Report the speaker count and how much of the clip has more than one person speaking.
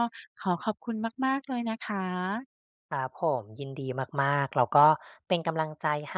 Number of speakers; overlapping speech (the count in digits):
2, no overlap